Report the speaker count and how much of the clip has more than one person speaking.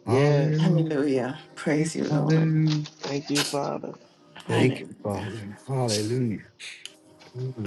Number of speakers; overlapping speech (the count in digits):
3, about 26%